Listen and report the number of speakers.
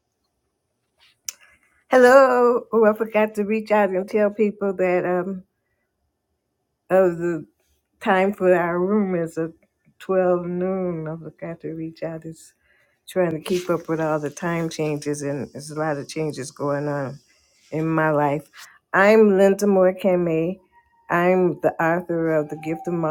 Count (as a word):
one